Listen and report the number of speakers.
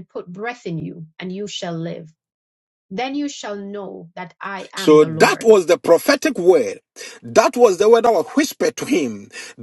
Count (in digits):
2